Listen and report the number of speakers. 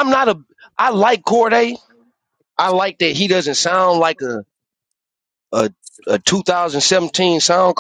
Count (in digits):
1